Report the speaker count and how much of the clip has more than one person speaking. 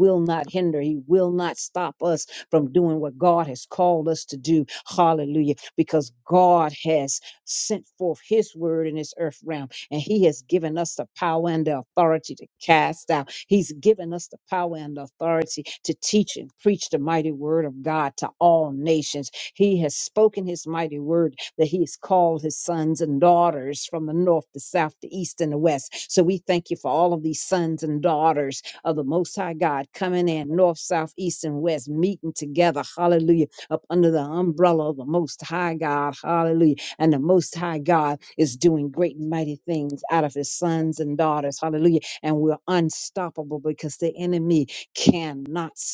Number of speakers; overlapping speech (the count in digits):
1, no overlap